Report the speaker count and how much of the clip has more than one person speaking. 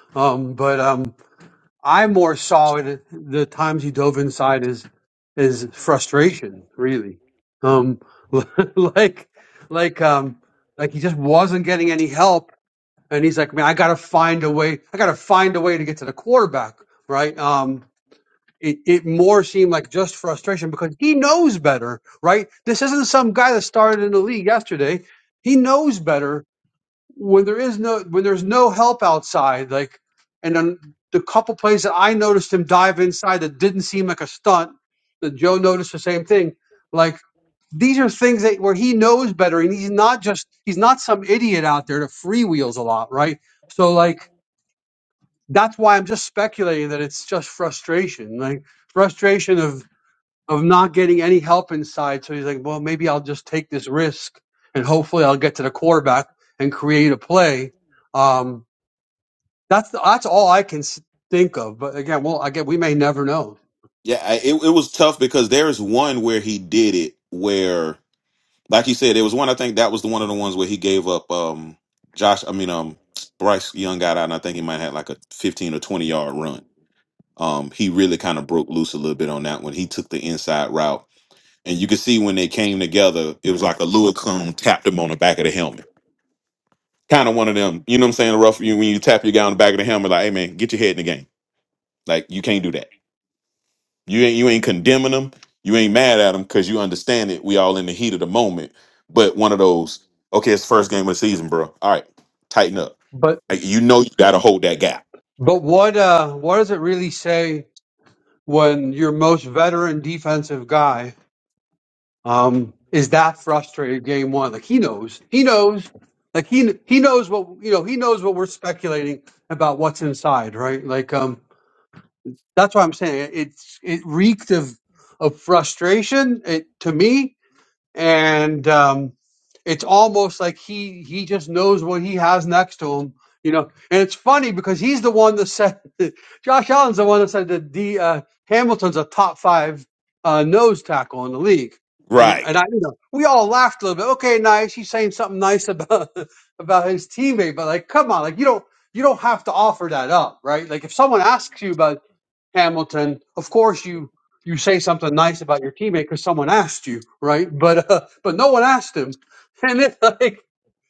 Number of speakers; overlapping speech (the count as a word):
two, under 1%